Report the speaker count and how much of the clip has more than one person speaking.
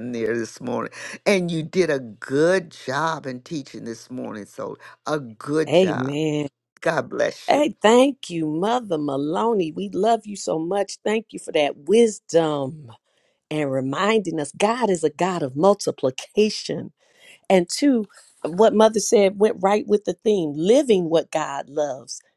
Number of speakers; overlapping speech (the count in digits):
2, about 3%